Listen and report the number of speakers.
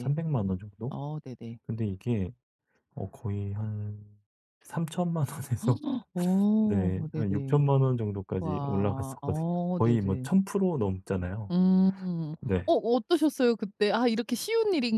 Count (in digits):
2